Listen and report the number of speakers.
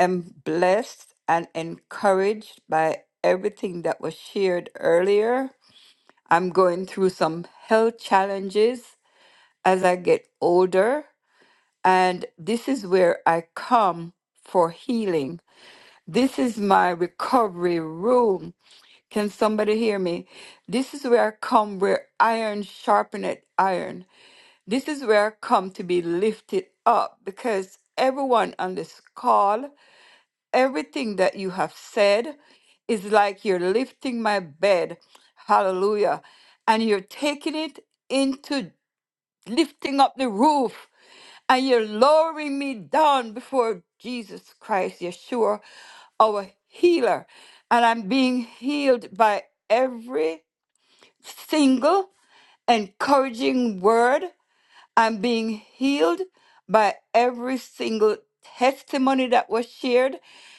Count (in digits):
1